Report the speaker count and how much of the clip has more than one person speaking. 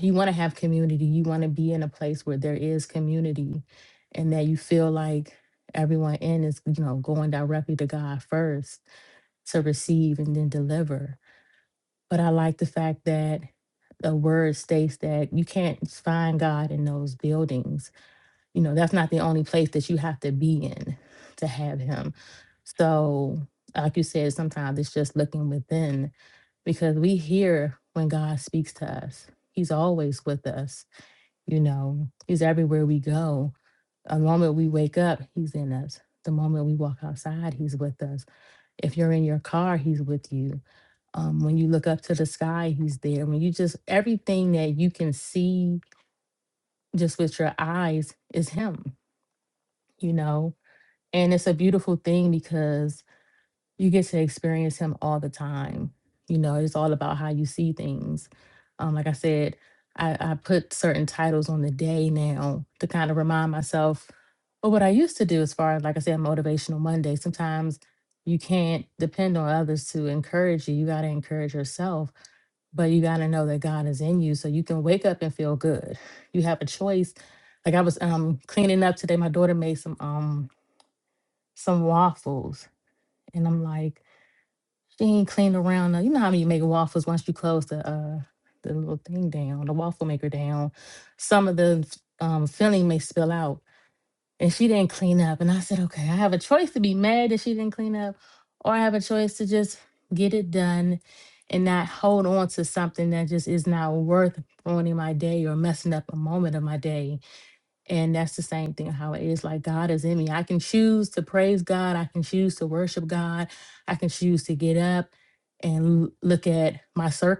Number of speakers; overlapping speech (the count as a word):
one, no overlap